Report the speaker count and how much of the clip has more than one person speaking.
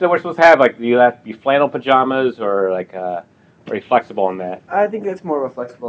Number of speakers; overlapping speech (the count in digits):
2, no overlap